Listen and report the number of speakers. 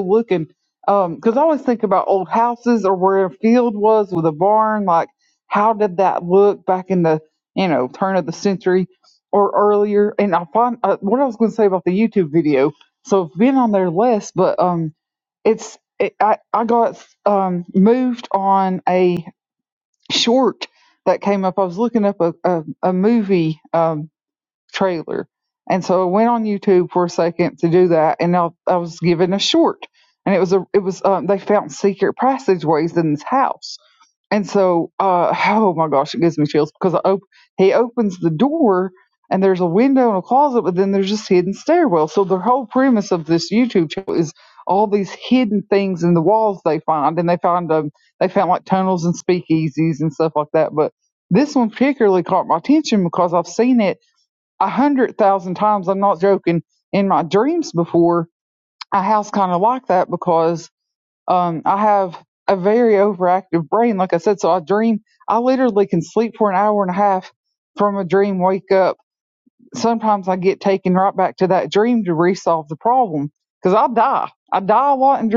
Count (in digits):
1